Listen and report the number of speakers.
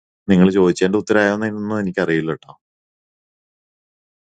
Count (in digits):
1